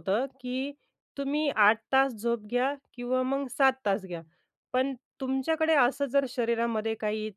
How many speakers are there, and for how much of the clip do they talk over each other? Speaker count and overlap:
1, no overlap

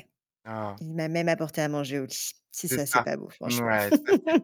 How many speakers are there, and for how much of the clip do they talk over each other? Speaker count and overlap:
2, about 15%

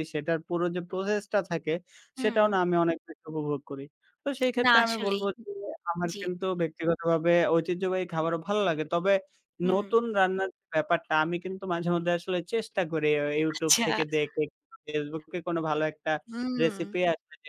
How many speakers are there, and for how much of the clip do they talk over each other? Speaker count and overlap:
2, about 14%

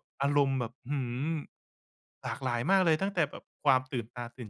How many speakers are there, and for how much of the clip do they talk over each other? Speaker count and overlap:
1, no overlap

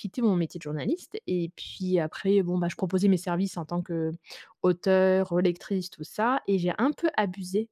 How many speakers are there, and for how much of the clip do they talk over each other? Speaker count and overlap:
1, no overlap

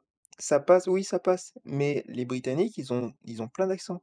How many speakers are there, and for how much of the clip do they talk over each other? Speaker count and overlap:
1, no overlap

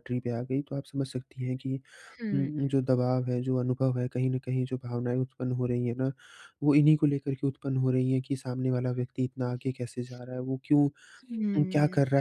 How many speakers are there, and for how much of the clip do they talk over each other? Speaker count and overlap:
2, about 4%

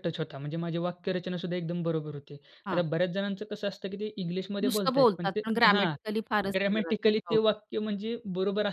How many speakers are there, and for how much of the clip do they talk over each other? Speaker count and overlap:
2, about 23%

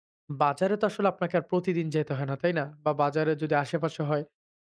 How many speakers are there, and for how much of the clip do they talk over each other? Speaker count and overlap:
1, no overlap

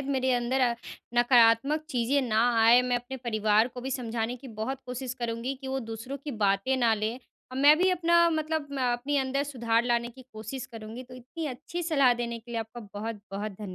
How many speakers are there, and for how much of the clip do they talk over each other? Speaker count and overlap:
1, no overlap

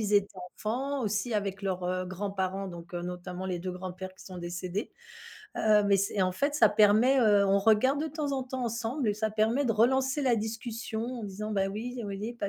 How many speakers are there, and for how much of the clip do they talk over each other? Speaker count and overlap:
1, no overlap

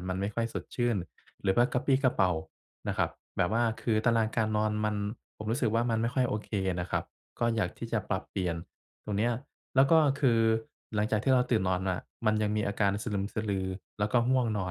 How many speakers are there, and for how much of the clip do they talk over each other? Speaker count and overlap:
1, no overlap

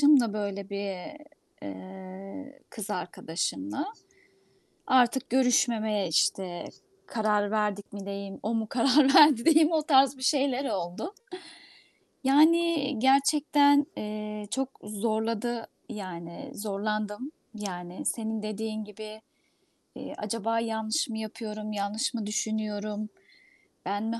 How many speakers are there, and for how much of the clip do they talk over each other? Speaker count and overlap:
1, no overlap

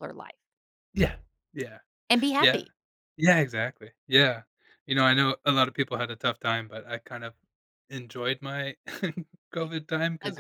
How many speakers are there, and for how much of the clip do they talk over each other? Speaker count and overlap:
2, about 4%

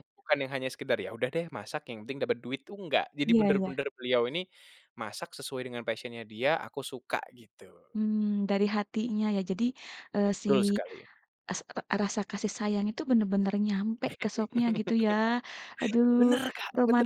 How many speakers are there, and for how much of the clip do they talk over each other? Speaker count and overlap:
2, about 7%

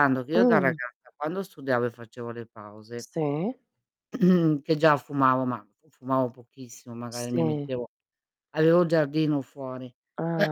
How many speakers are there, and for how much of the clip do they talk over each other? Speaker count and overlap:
2, about 7%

